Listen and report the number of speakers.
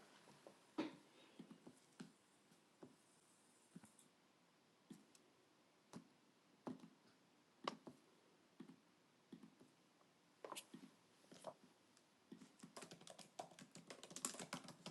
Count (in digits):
0